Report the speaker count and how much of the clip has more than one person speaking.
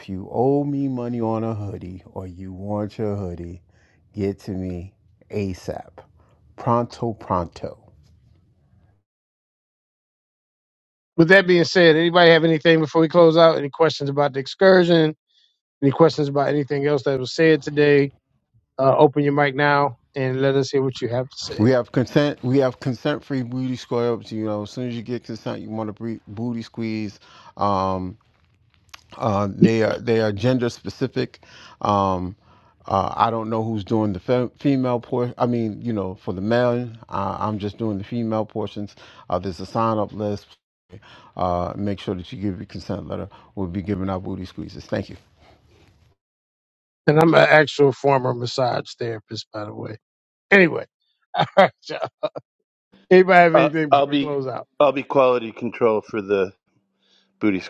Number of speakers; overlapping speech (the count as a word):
three, about 2%